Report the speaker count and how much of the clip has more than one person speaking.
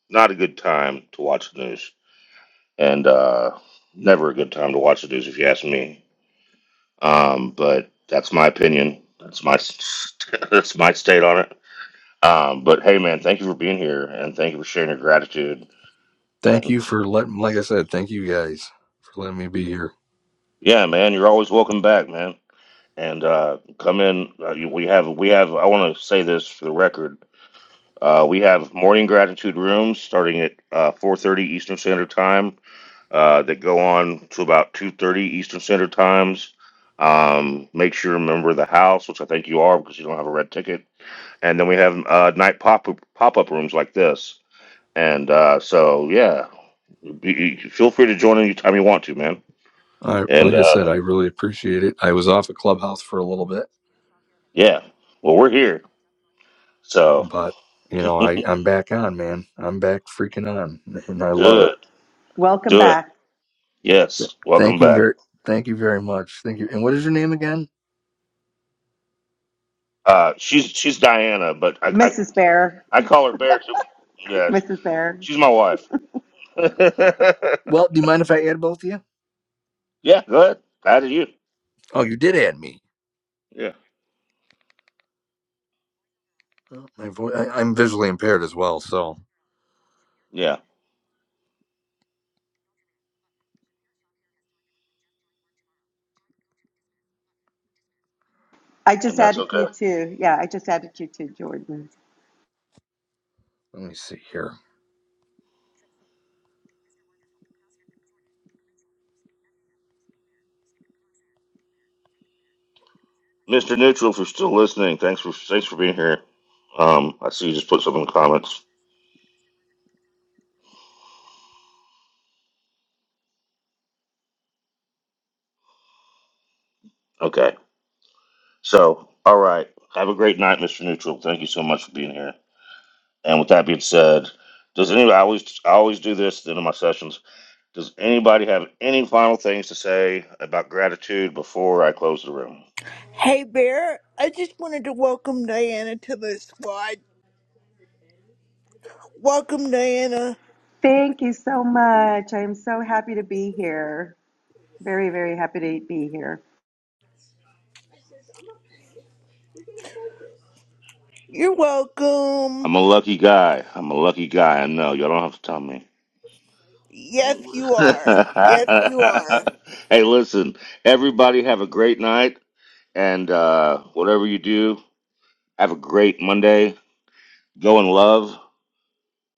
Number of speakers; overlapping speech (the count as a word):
four, about 2%